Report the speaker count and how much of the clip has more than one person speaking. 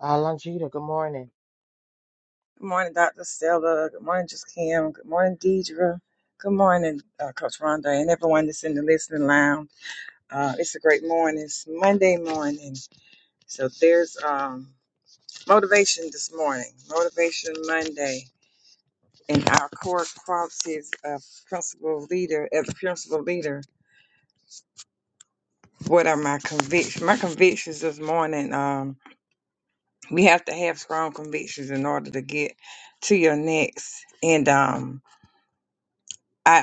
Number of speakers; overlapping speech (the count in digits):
2, no overlap